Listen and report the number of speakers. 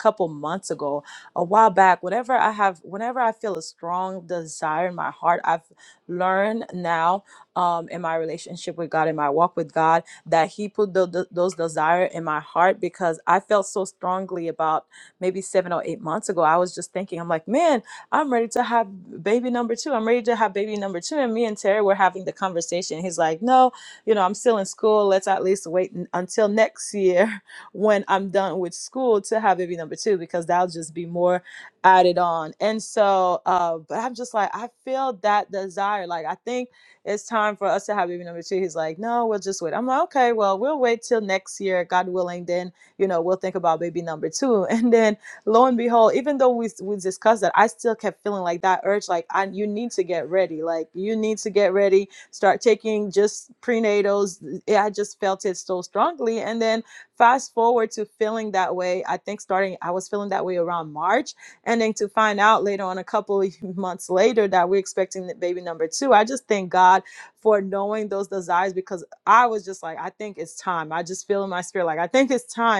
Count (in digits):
1